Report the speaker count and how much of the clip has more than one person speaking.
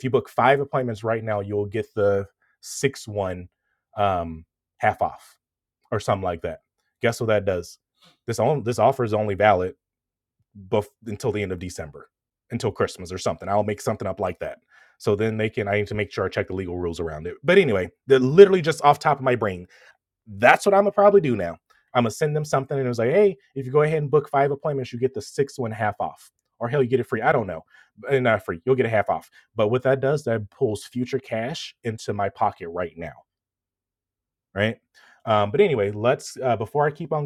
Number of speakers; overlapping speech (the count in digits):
1, no overlap